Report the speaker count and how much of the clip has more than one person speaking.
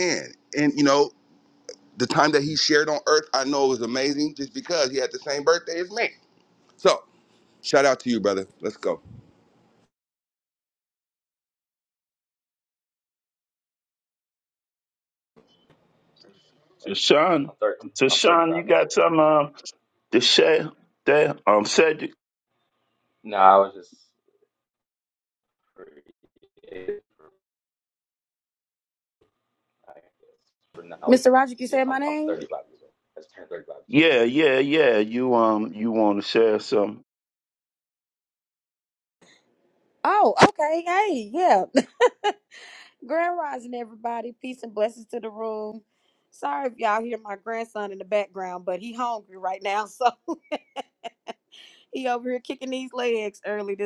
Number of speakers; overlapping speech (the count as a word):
four, about 4%